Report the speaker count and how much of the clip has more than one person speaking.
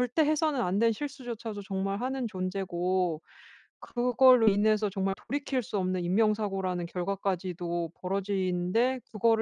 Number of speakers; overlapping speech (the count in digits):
1, no overlap